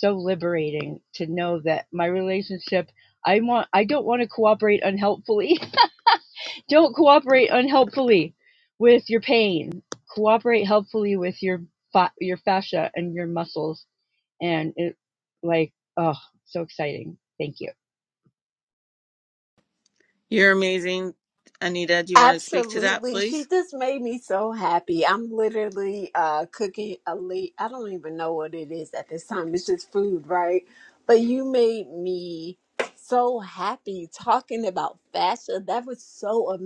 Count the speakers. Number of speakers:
3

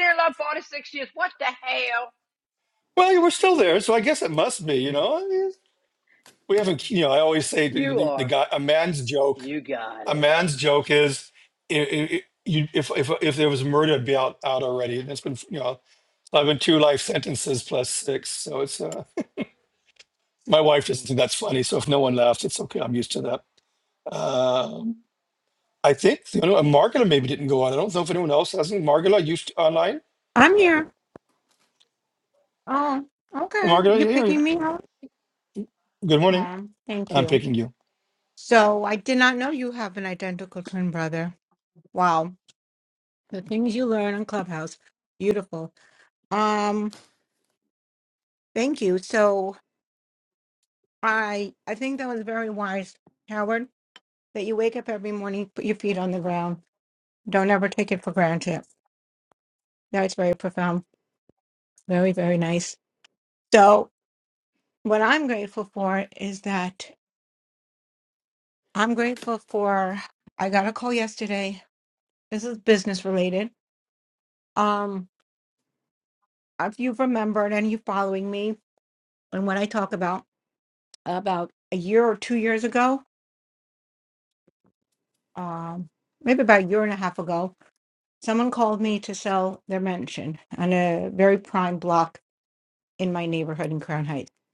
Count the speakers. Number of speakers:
3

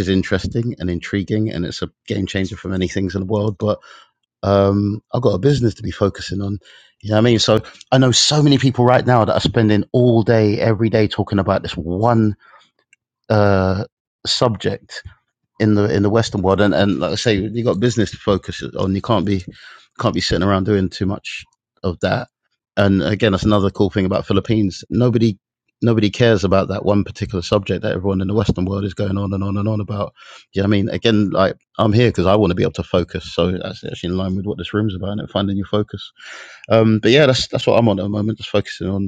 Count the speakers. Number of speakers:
1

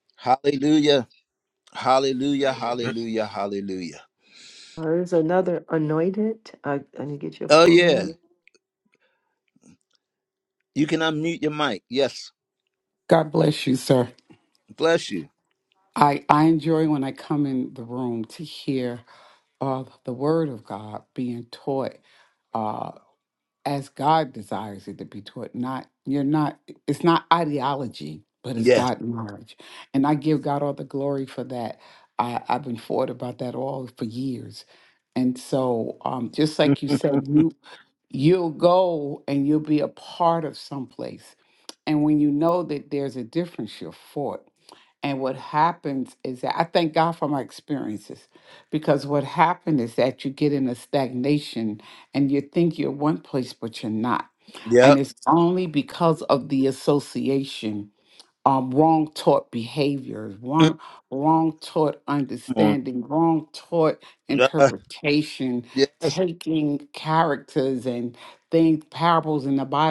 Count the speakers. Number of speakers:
3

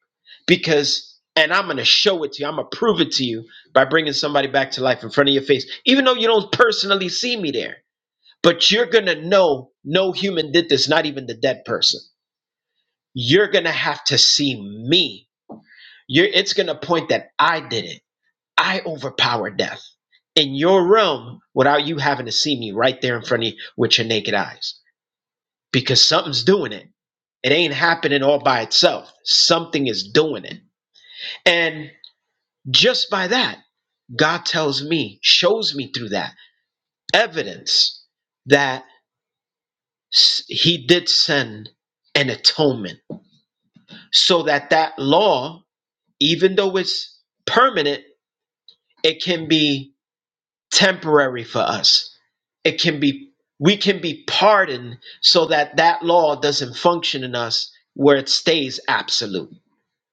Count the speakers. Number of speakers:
1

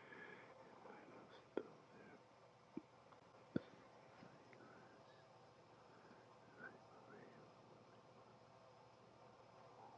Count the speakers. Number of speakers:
0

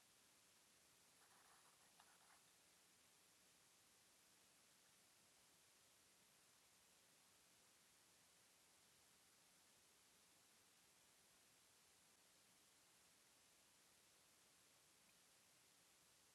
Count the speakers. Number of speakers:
0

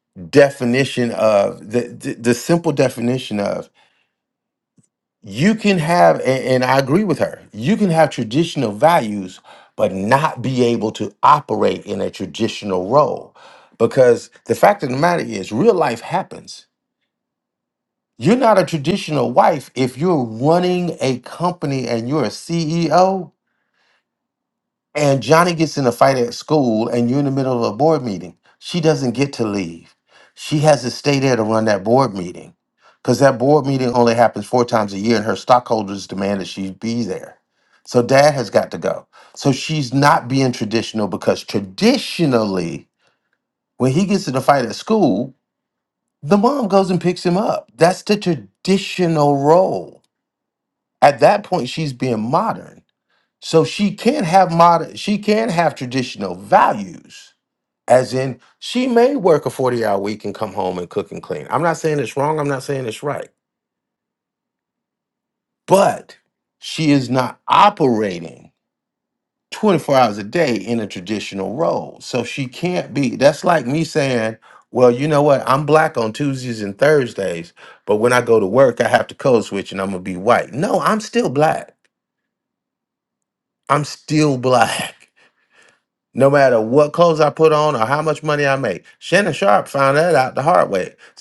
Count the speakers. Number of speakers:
1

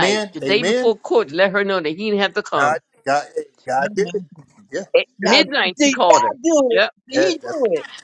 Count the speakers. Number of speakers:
3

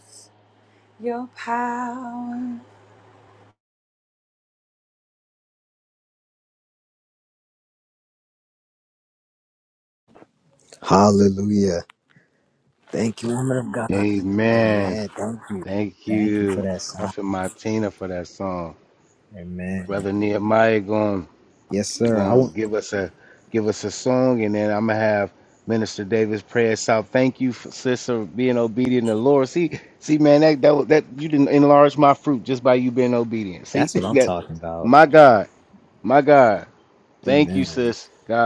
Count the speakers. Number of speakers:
3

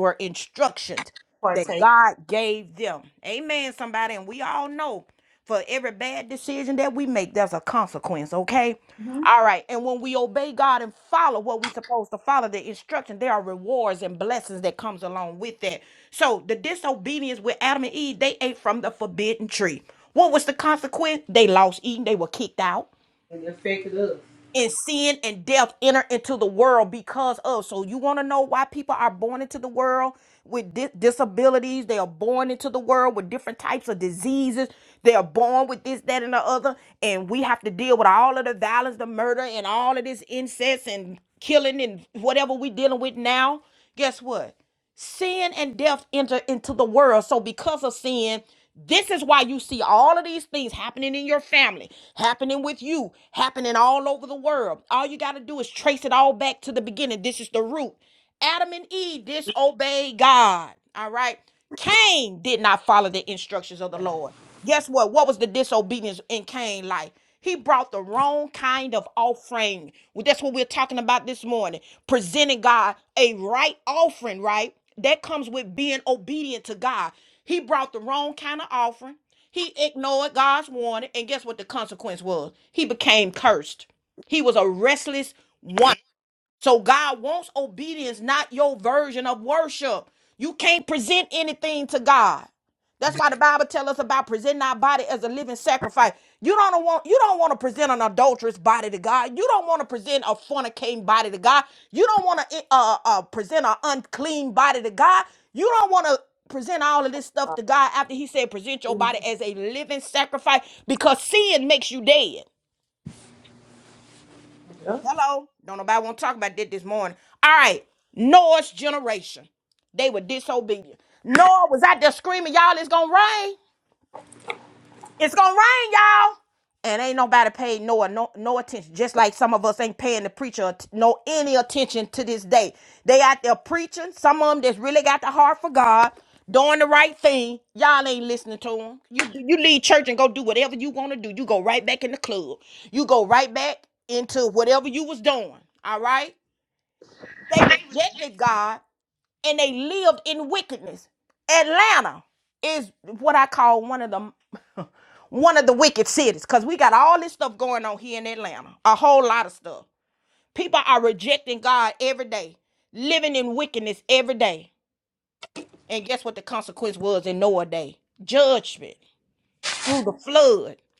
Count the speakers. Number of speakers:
2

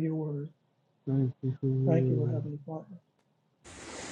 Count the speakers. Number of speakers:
2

